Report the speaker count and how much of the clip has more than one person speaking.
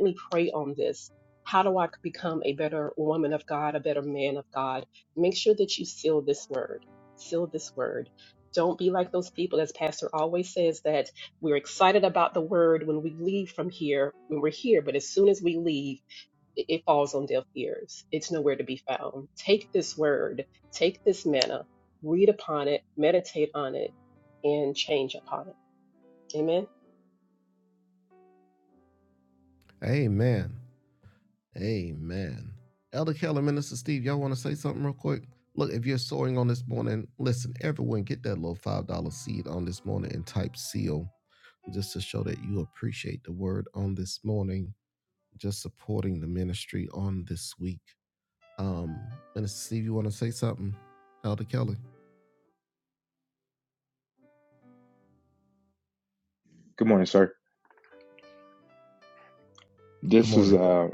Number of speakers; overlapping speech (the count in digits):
3, about 1%